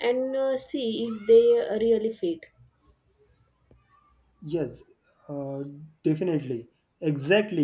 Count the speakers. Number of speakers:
2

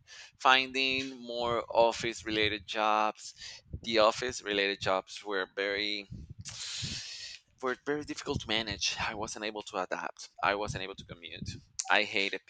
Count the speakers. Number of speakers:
1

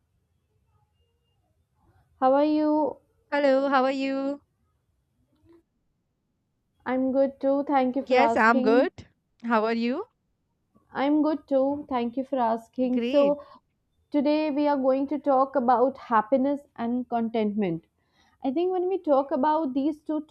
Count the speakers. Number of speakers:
2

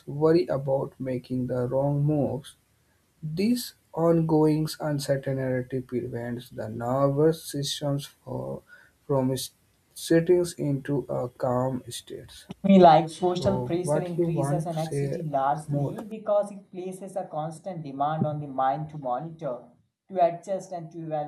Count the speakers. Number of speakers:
2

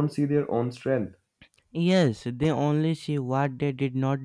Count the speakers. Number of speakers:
2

